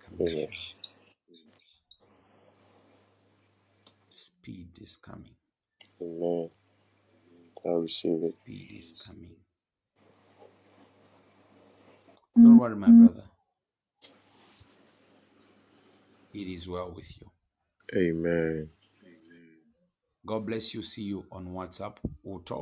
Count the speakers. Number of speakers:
two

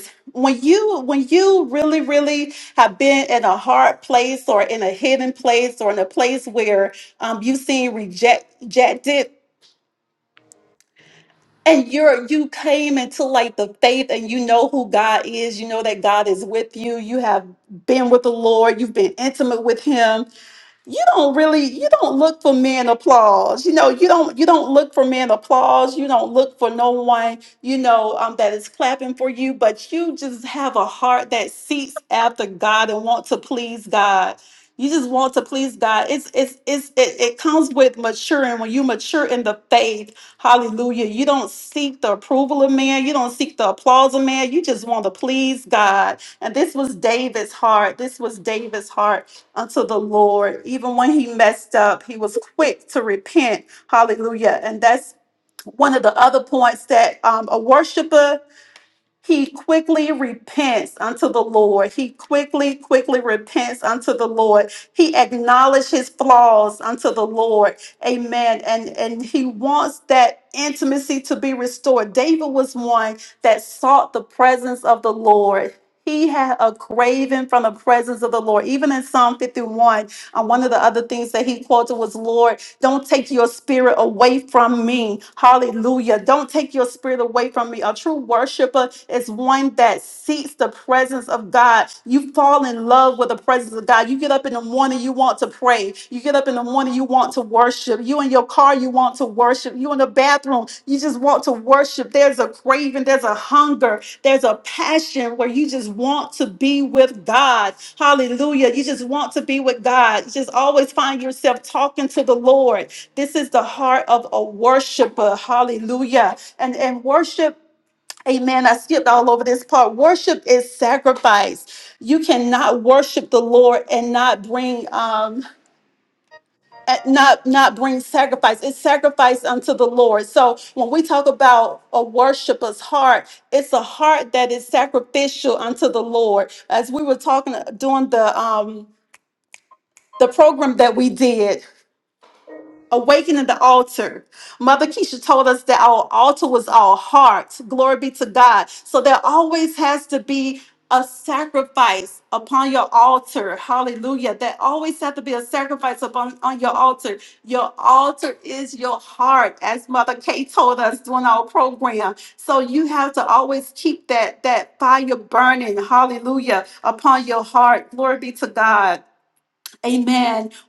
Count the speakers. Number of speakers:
one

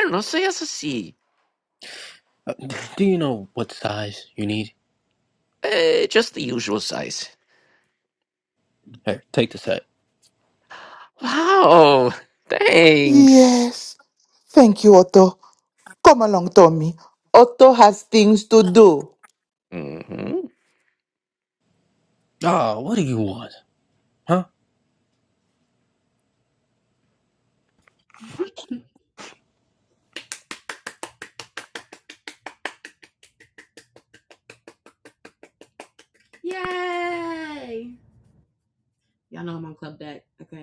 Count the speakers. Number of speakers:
four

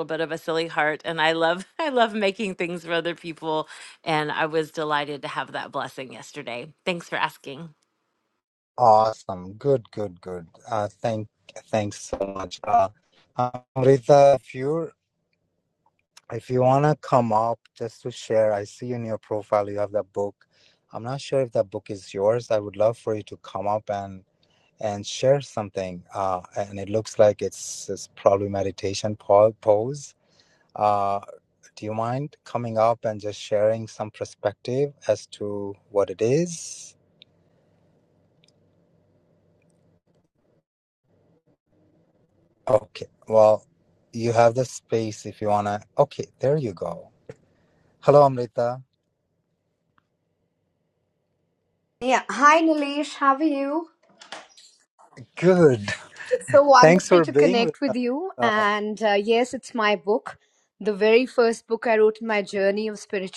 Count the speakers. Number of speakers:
three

